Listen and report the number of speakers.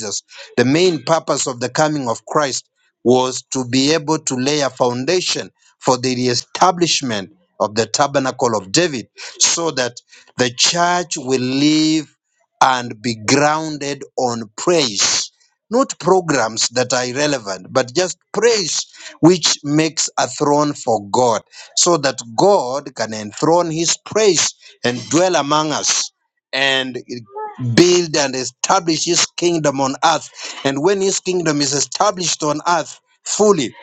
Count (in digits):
1